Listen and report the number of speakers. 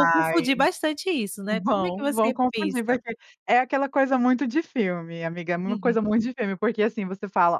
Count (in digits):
2